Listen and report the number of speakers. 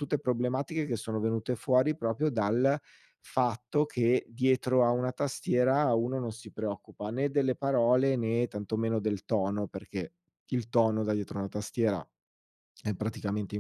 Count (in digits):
1